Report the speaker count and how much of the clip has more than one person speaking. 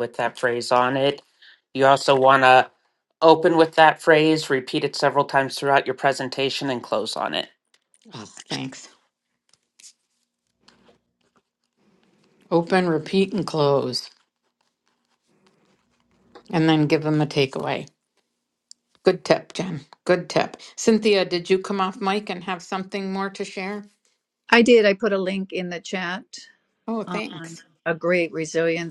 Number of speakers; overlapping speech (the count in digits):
3, about 2%